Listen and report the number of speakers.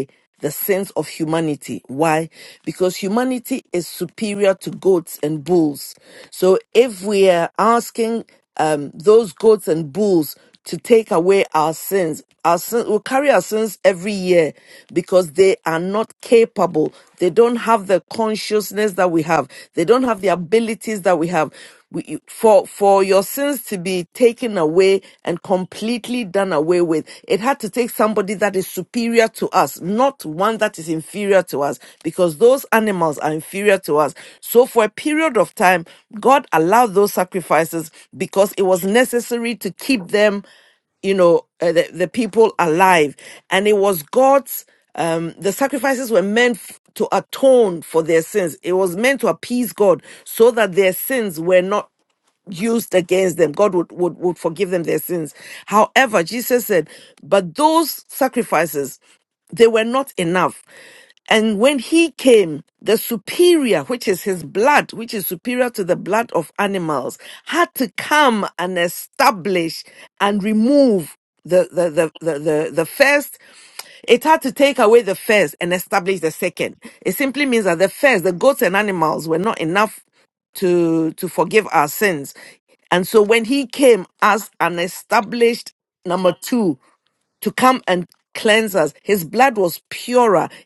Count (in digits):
1